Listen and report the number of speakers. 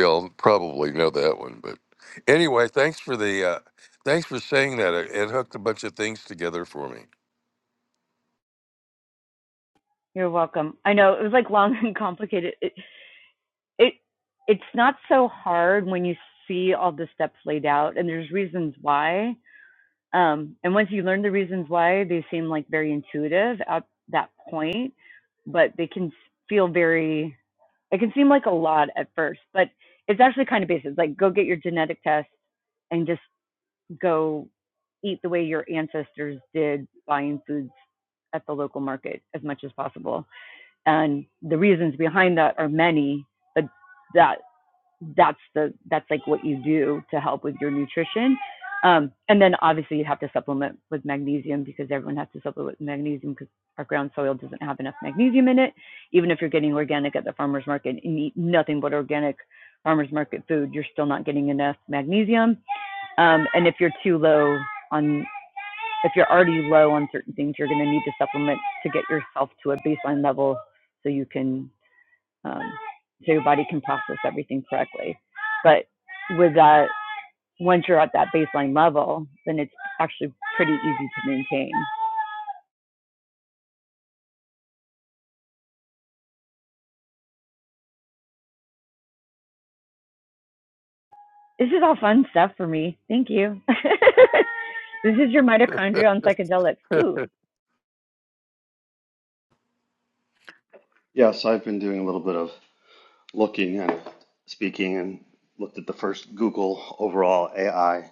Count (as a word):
three